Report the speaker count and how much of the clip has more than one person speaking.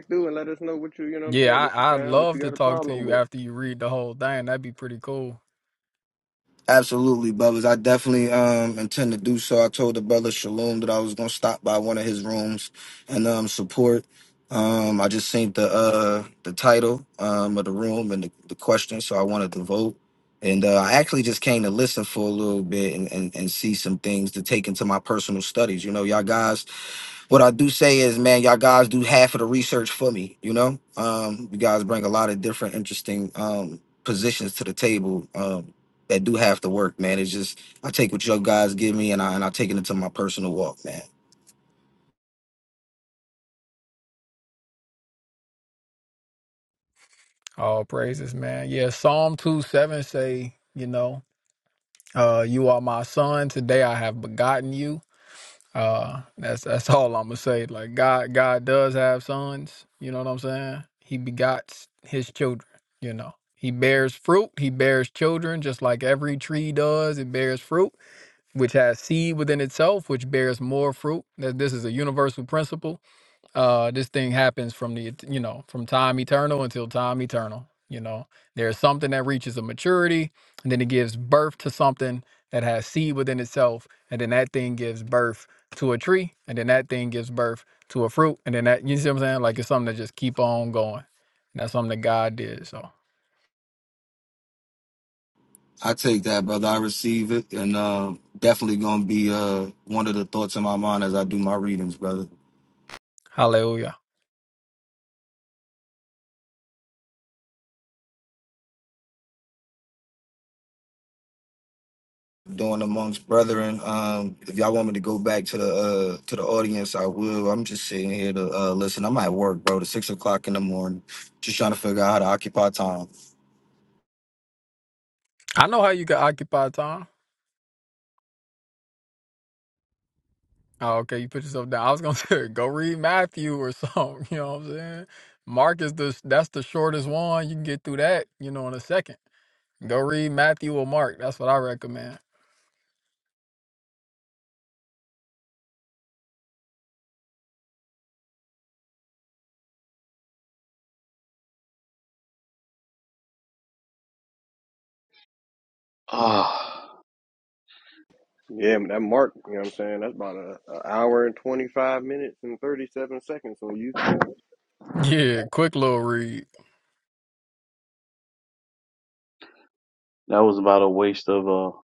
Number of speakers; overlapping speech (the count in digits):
4, about 1%